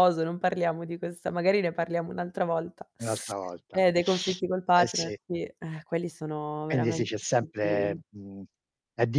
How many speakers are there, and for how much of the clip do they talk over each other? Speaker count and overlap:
two, about 15%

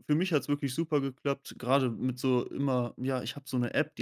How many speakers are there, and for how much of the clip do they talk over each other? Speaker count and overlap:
one, no overlap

